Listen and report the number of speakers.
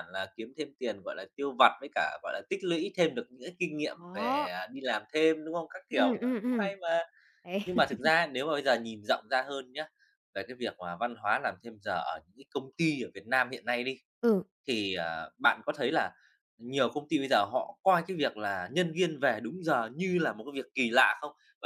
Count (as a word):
two